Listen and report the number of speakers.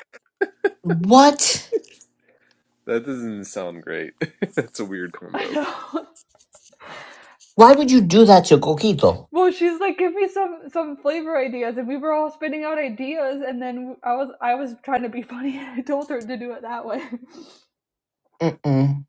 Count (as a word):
three